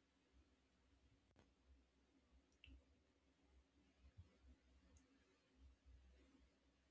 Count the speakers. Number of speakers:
zero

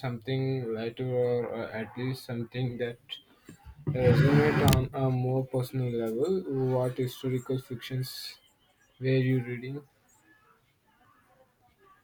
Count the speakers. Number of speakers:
one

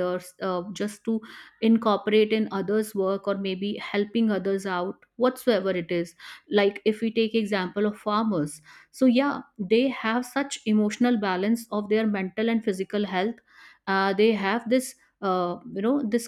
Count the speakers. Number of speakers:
one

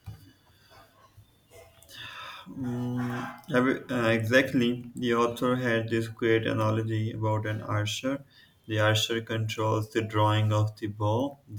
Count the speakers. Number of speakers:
one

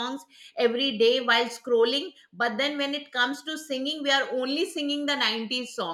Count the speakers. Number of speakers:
one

